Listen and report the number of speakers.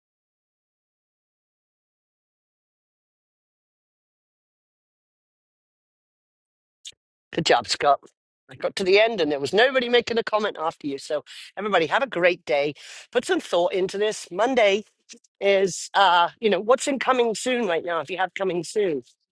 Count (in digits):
1